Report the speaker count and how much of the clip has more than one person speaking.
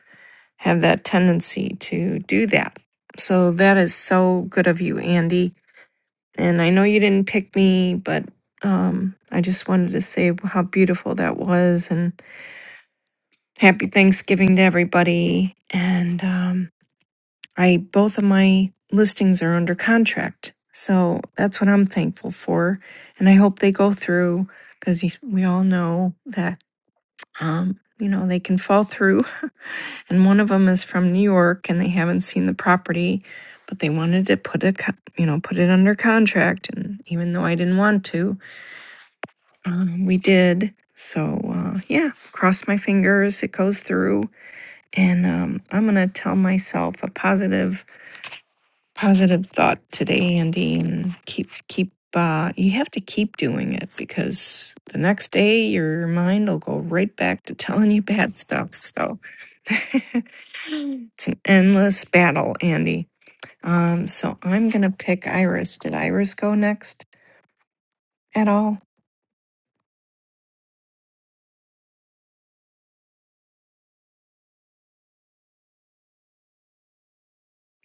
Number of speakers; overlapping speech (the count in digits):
1, no overlap